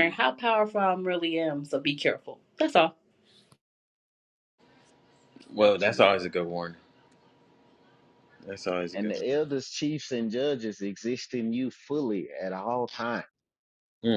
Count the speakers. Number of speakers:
three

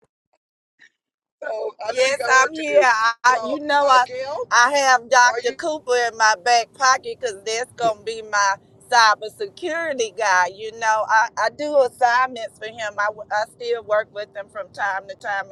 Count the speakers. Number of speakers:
two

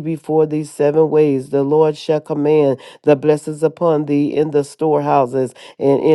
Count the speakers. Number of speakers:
one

